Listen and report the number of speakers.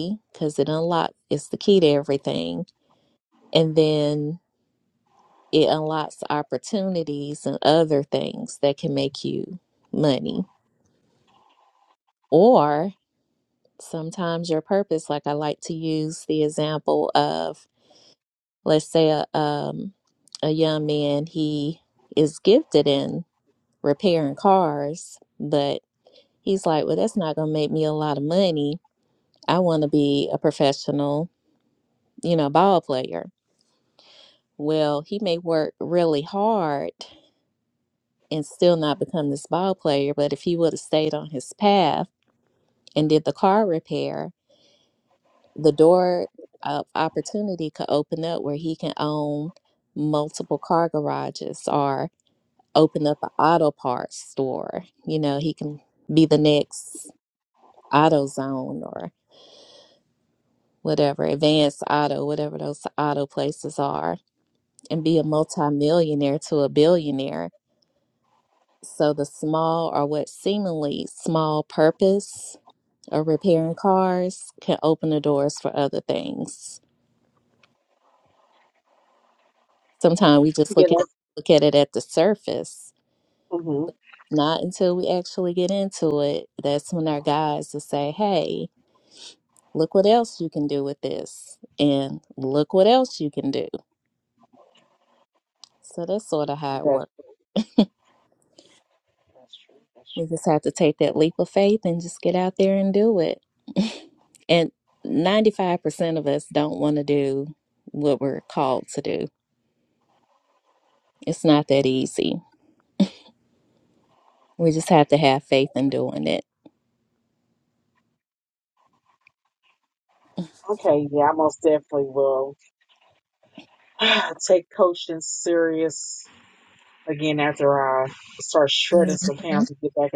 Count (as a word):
two